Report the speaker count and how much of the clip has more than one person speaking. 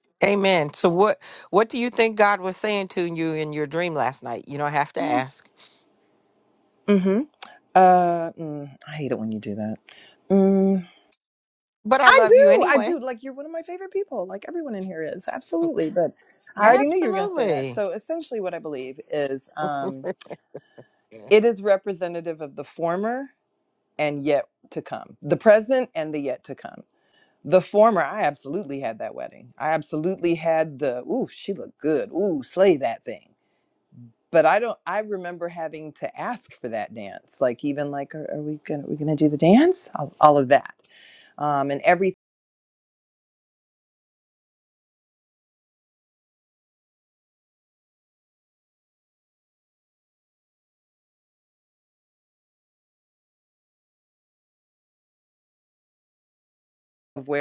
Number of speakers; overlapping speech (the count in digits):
2, about 3%